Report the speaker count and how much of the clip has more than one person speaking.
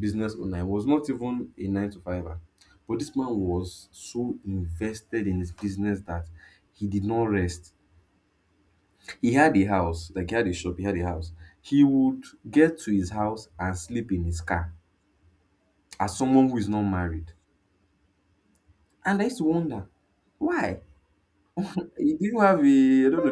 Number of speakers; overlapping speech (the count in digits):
1, no overlap